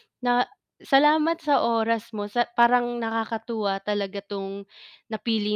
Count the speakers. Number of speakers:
1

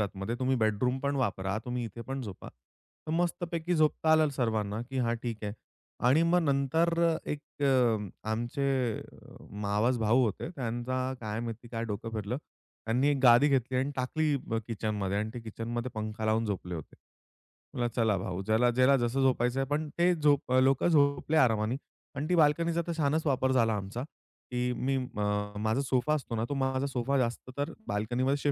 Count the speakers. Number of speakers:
1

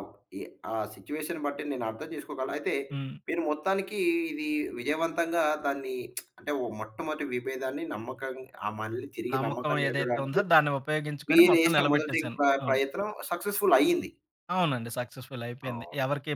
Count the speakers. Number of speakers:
2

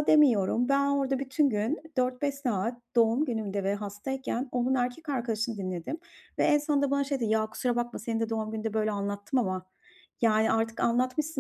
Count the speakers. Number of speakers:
1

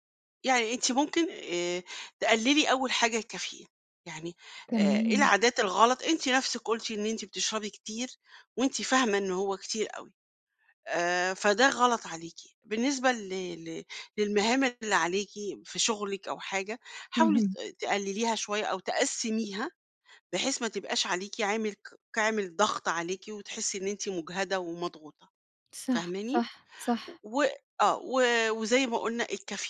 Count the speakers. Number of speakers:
2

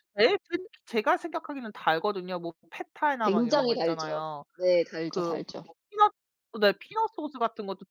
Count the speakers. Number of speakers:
2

